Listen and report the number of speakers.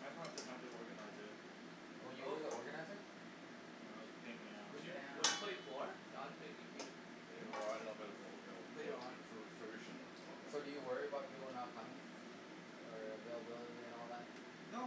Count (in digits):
4